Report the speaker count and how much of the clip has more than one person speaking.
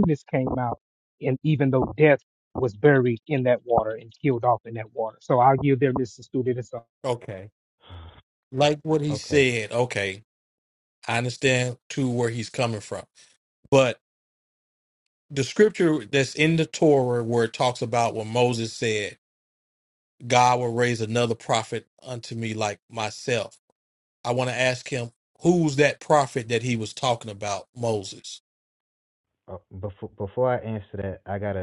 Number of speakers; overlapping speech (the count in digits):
3, about 1%